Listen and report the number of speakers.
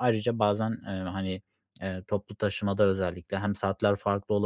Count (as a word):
one